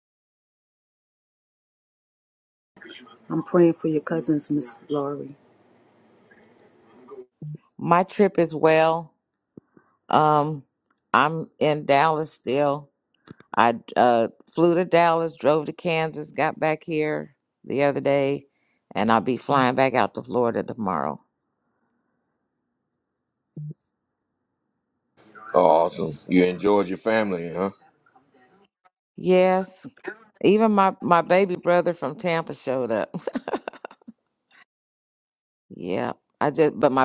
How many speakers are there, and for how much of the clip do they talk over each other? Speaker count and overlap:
3, no overlap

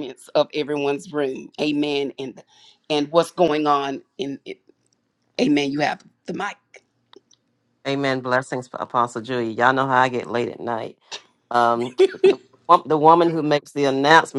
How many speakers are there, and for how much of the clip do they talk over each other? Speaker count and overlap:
2, no overlap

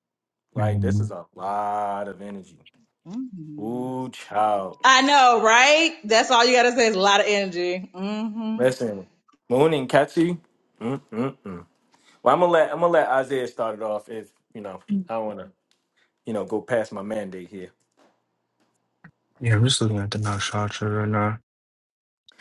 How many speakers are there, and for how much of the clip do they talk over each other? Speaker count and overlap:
3, about 3%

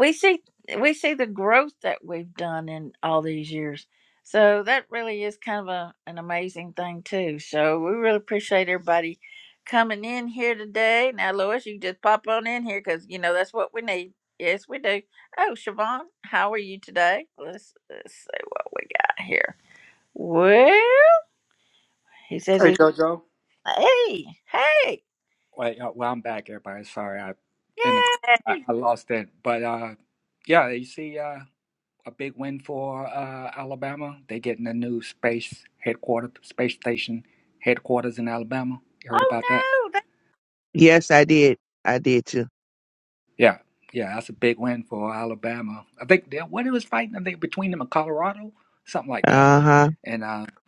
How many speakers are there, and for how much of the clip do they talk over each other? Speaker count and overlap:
3, about 3%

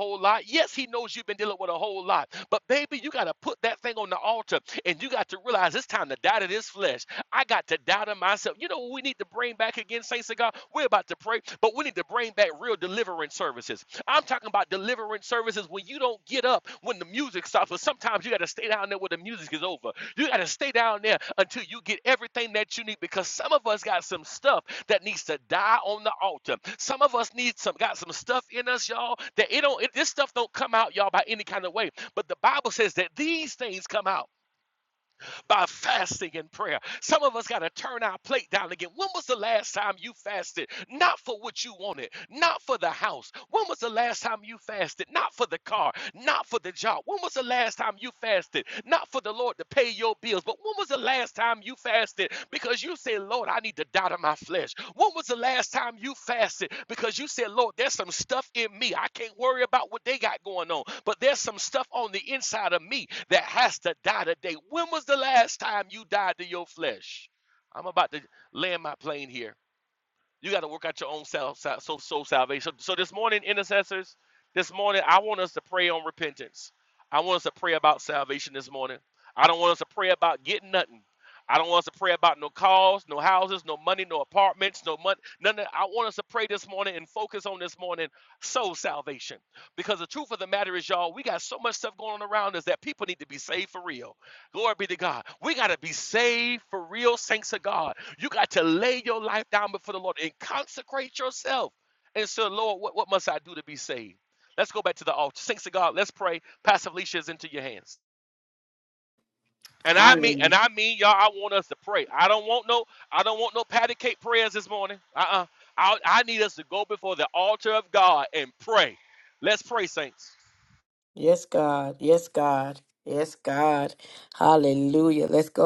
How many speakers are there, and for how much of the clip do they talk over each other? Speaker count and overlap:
2, about 1%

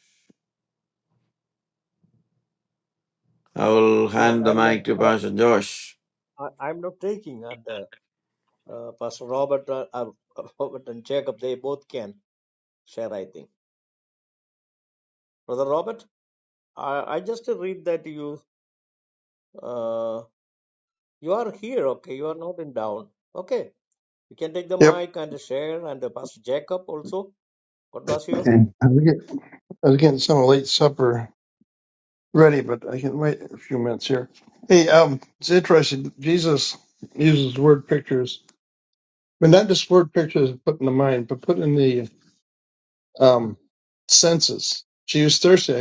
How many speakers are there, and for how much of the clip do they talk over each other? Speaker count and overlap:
3, about 3%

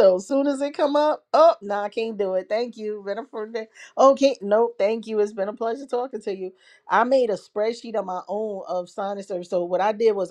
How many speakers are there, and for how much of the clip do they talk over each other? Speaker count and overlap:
1, no overlap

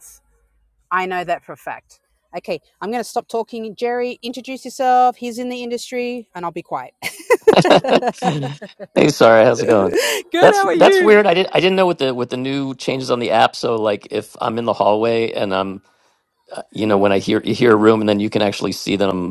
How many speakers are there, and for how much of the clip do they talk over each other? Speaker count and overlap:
2, about 6%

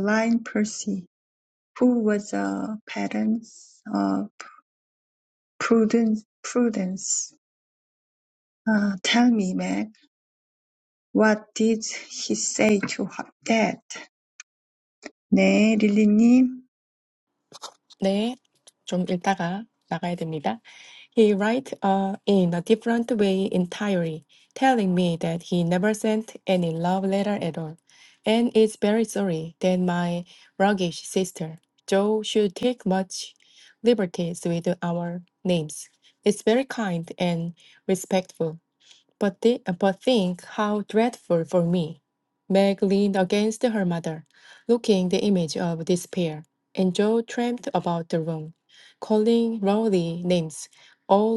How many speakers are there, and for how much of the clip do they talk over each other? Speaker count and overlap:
2, no overlap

